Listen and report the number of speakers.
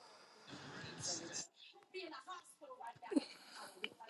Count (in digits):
0